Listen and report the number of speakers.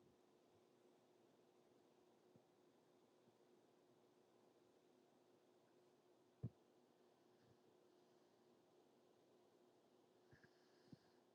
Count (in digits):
0